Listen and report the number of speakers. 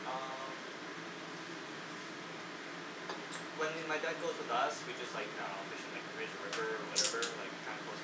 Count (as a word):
one